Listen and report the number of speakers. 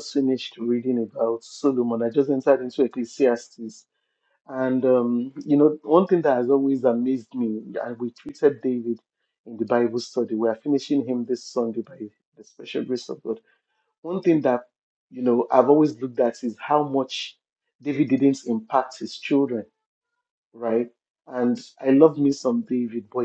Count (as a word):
one